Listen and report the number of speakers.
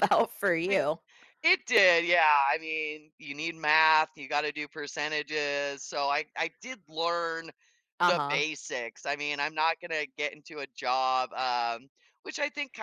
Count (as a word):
two